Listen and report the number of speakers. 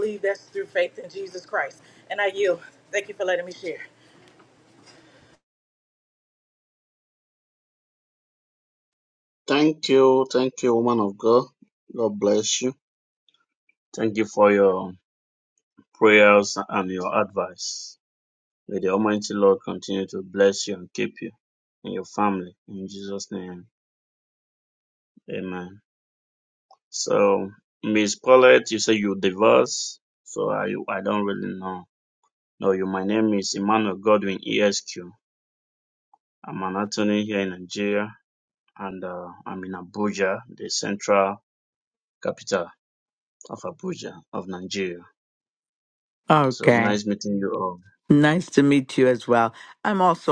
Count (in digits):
3